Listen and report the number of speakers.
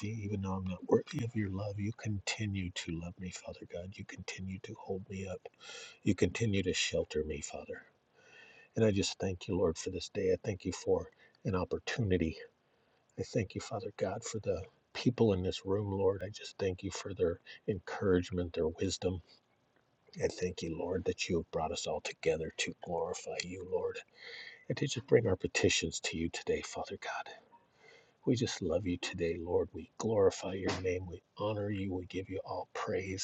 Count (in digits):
1